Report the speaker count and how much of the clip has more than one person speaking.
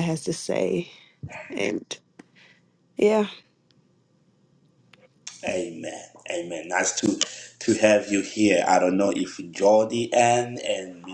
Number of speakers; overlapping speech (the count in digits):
2, no overlap